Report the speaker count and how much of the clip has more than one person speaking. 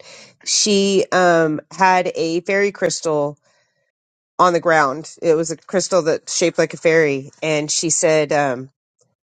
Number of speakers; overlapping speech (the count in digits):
1, no overlap